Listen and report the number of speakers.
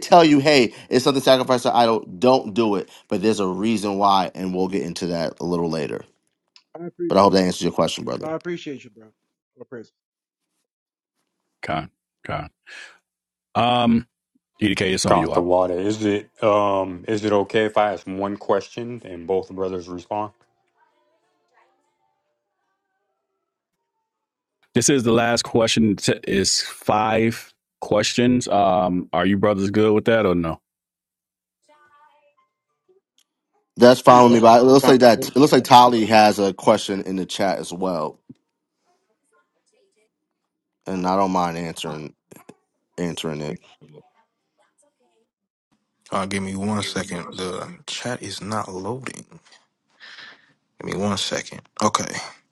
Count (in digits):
5